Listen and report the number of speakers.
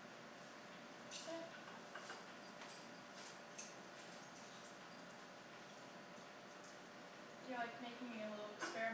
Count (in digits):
1